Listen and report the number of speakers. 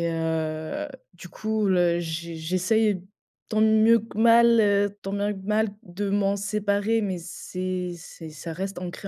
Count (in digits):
1